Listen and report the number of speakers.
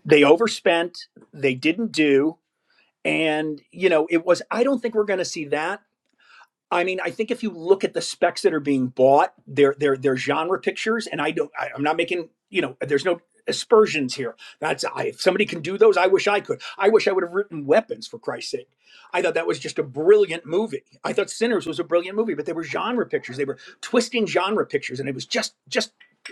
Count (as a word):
one